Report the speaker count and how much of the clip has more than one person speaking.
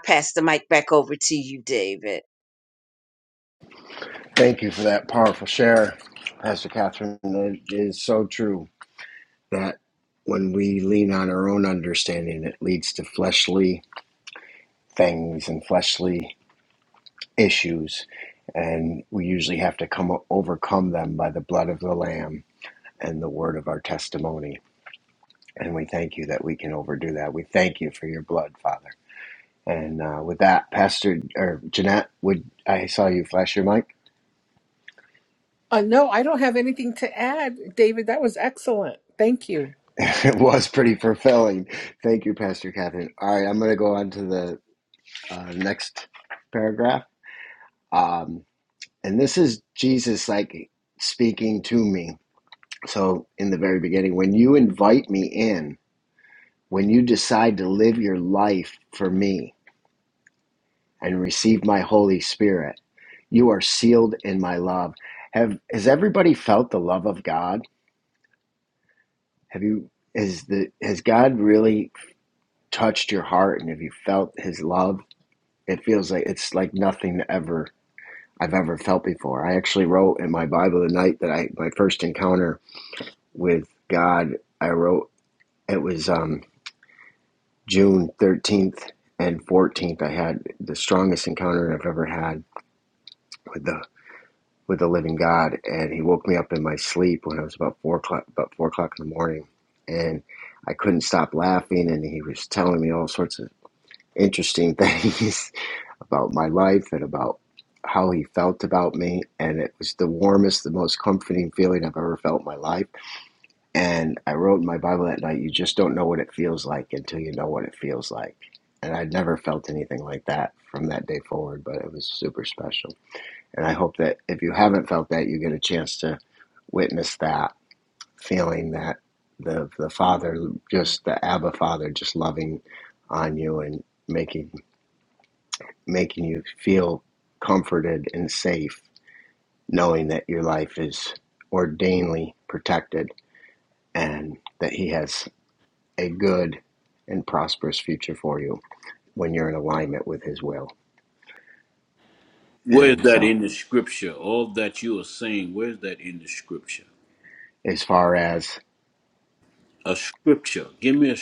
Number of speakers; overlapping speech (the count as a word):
four, under 1%